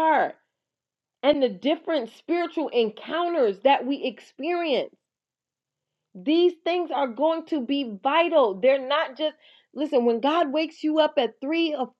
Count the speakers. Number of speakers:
1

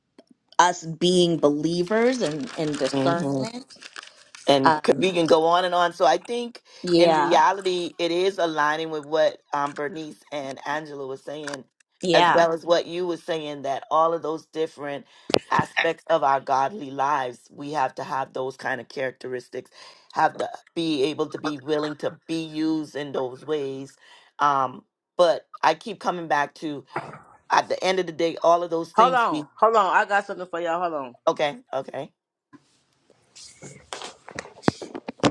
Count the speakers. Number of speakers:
3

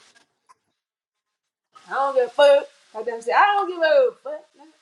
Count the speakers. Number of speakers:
1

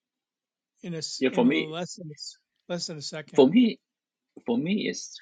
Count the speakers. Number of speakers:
2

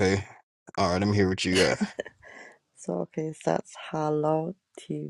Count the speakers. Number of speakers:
2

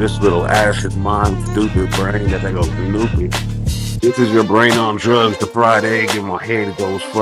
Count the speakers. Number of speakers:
1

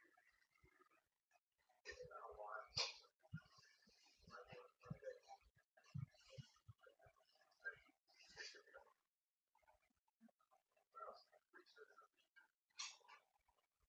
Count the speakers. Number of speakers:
0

